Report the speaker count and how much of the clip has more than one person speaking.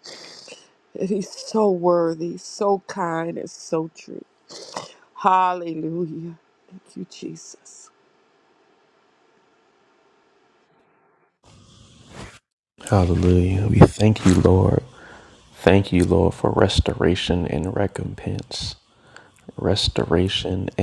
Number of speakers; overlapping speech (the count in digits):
2, no overlap